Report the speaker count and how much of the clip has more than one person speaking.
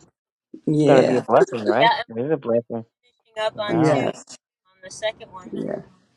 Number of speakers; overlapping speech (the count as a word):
three, about 19%